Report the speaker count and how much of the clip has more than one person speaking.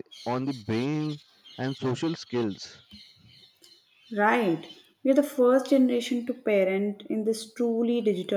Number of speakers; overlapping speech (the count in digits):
2, no overlap